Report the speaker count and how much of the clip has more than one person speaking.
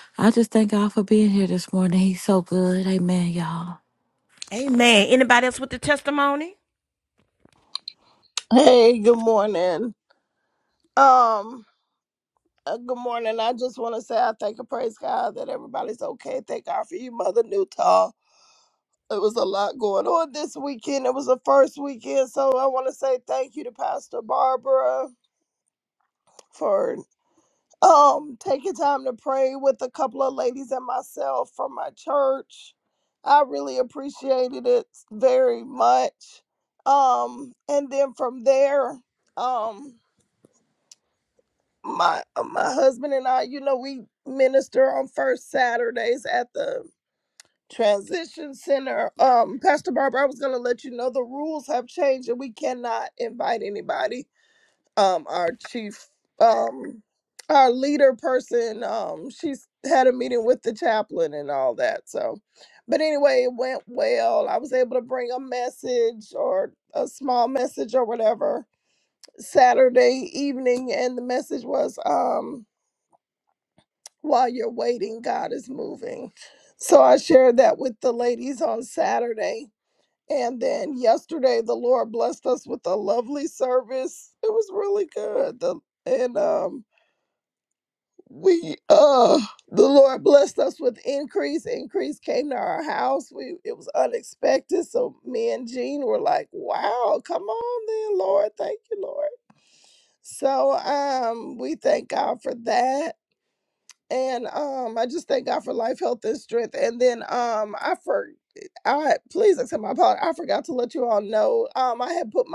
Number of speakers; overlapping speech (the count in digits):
3, no overlap